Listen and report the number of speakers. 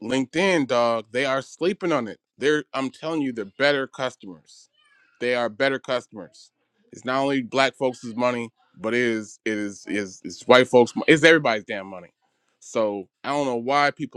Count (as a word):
one